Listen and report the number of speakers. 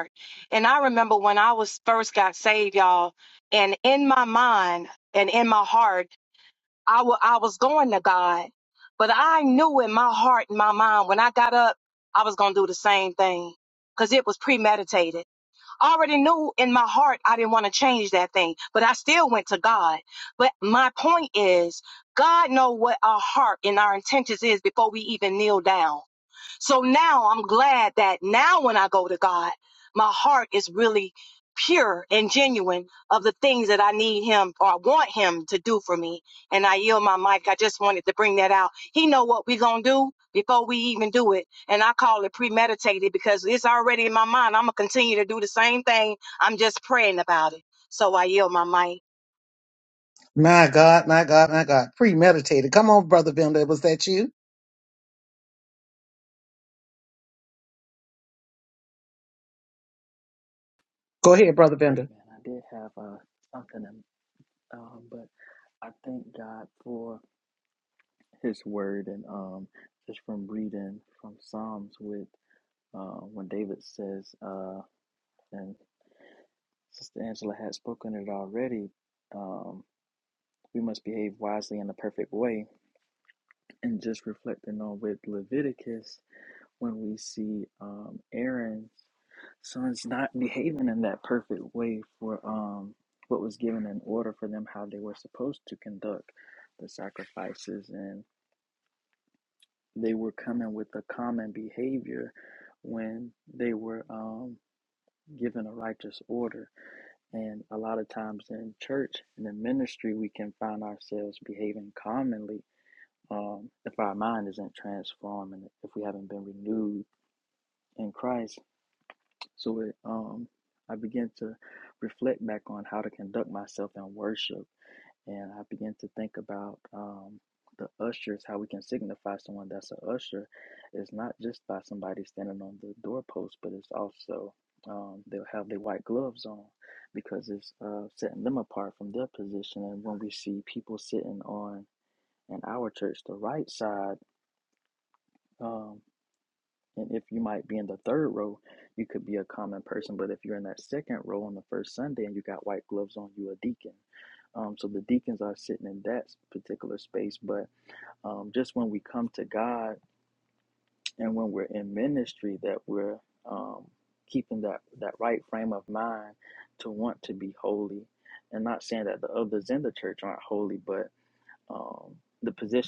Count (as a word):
three